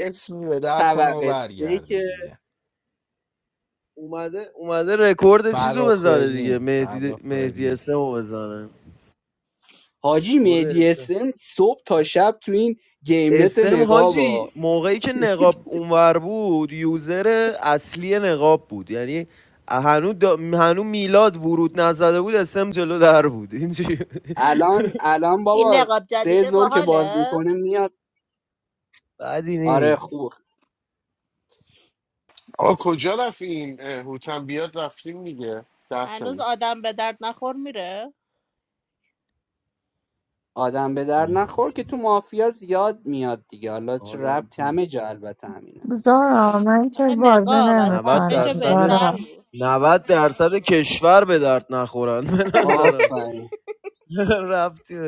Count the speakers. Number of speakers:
6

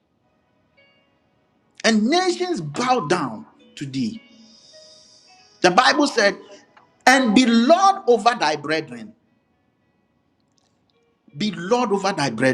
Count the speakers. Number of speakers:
1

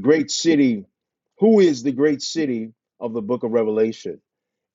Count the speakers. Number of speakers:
1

